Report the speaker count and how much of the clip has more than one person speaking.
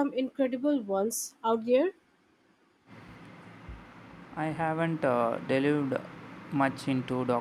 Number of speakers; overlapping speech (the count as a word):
two, no overlap